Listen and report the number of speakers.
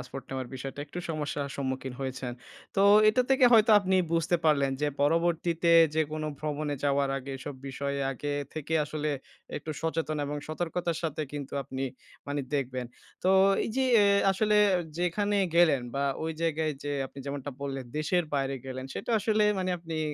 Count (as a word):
one